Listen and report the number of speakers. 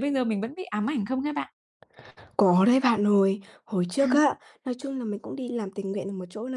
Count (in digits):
2